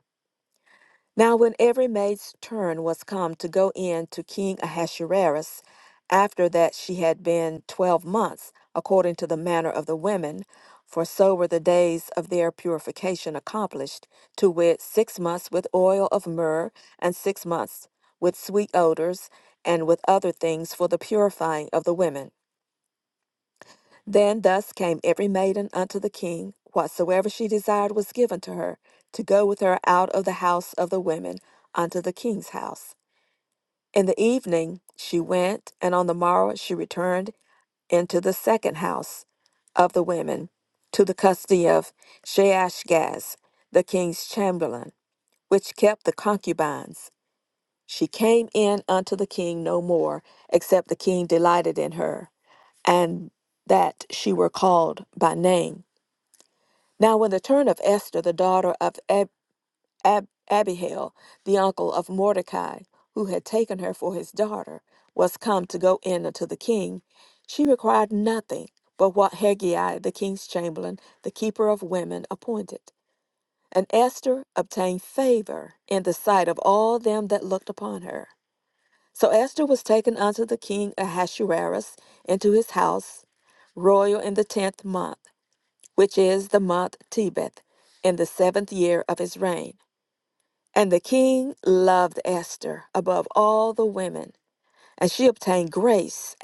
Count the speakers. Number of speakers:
one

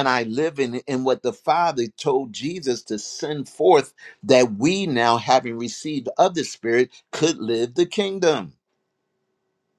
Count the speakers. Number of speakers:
one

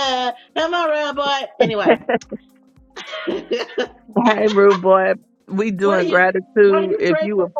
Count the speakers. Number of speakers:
two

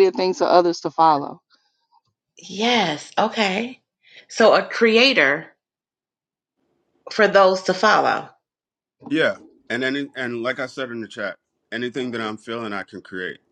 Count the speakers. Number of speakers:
three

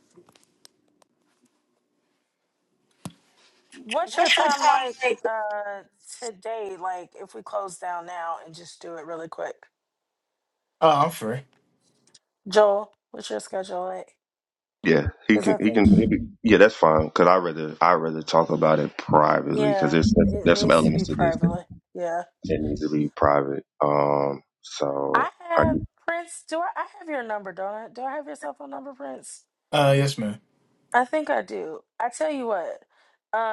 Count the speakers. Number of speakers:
three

